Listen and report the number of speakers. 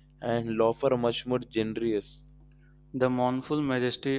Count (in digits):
2